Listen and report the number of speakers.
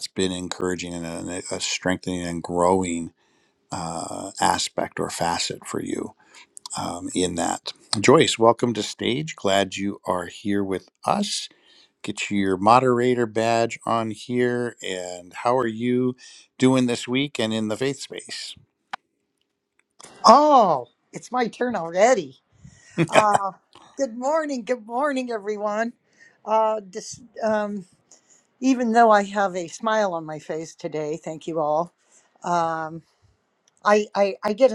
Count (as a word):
two